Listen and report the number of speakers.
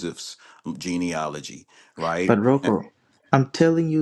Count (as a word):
two